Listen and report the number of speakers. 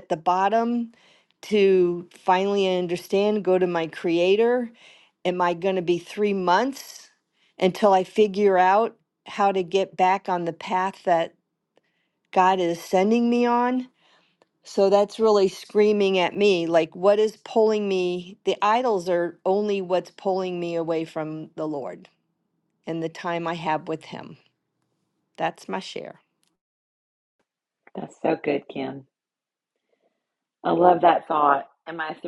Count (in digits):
2